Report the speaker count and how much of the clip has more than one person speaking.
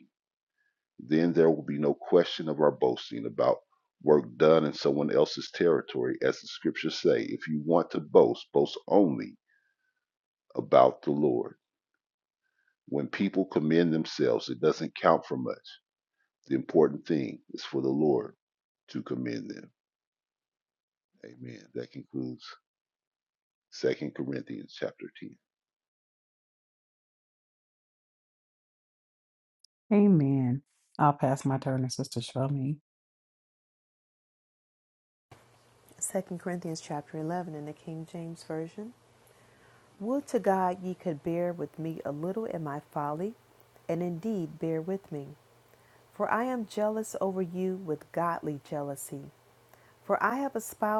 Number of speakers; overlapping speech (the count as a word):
three, no overlap